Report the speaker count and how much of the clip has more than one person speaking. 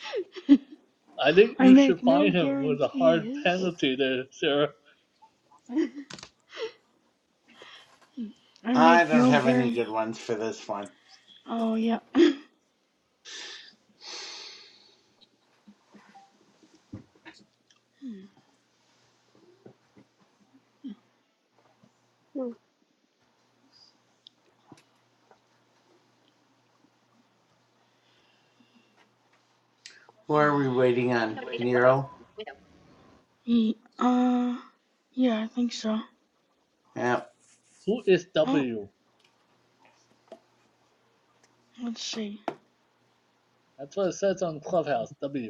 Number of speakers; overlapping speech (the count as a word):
three, about 7%